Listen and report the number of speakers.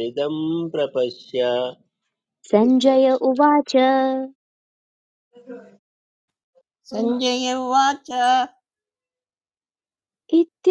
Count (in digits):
3